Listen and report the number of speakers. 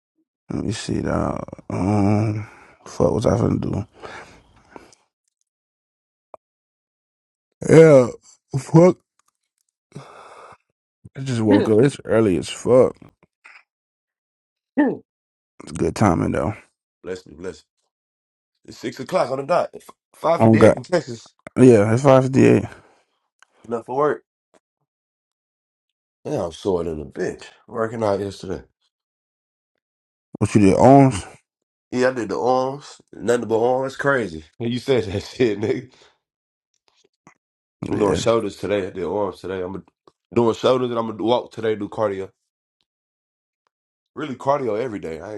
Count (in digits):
2